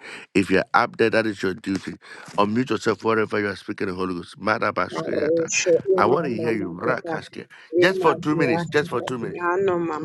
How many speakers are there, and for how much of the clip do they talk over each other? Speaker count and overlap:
two, about 33%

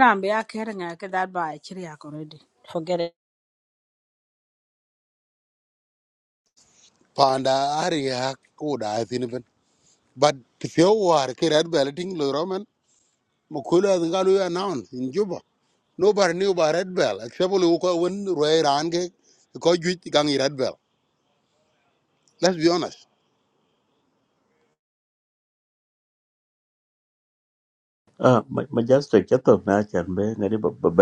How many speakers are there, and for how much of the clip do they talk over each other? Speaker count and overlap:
three, no overlap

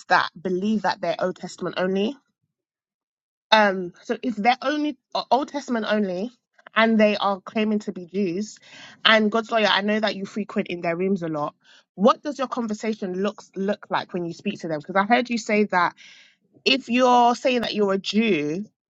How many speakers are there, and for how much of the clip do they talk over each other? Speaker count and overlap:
one, no overlap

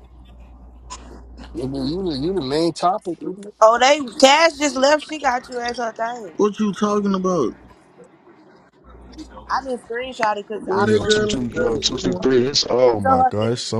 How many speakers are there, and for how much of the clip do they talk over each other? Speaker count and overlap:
four, about 19%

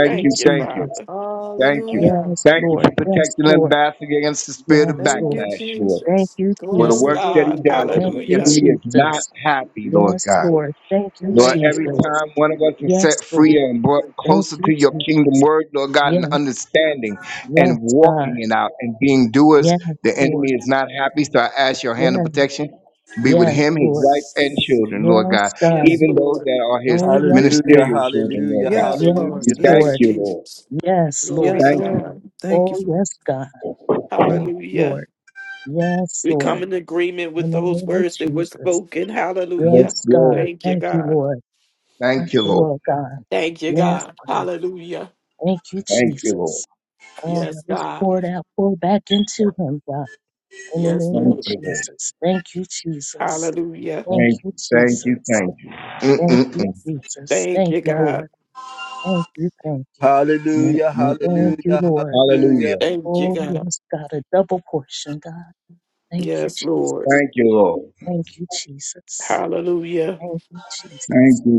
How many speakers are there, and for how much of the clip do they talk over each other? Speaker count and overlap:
five, about 45%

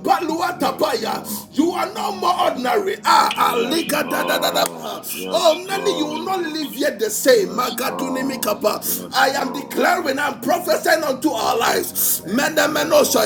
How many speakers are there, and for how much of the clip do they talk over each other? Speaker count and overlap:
two, about 50%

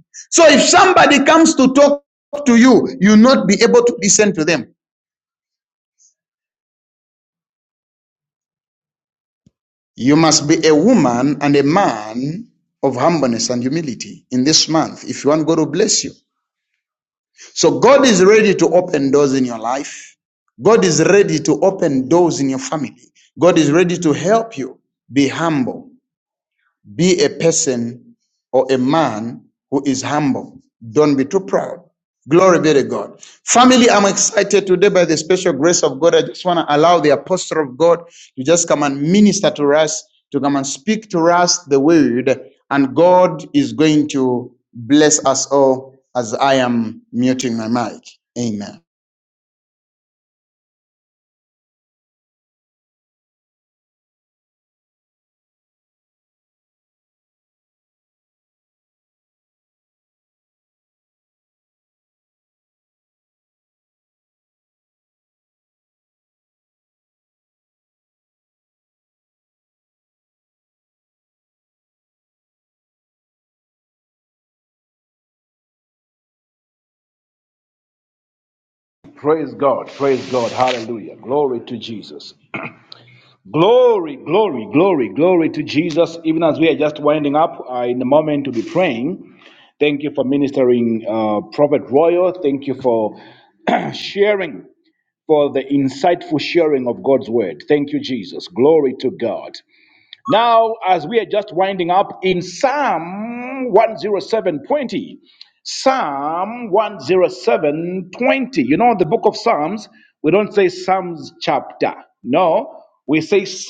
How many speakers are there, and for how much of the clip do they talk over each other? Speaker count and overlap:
two, no overlap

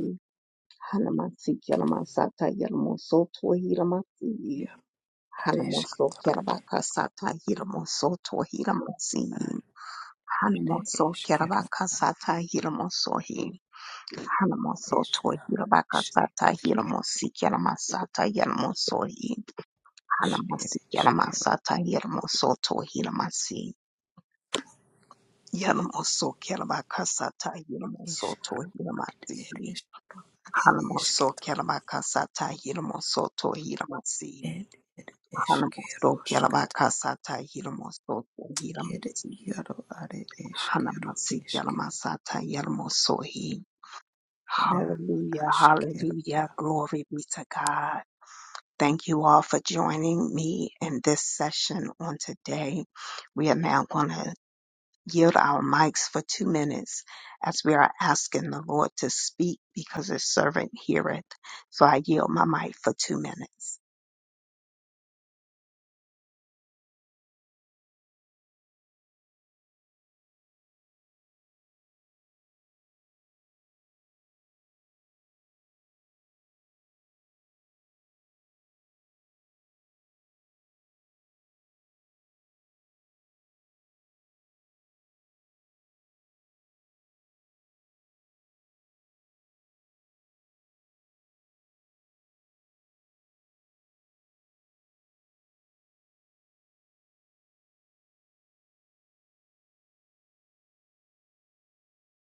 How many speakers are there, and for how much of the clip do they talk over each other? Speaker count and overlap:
two, about 10%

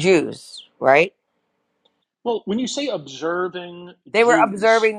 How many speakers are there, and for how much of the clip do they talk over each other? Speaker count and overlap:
two, about 15%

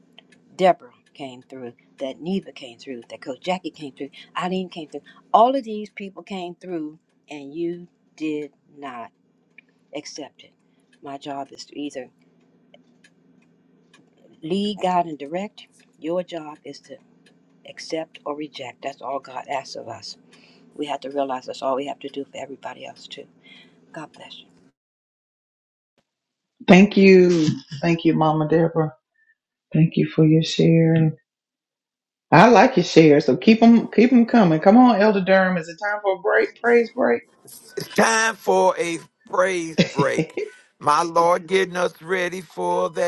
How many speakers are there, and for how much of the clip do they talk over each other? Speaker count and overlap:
three, no overlap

